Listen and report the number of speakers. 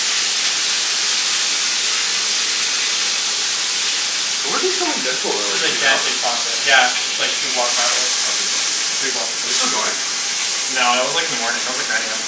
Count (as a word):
two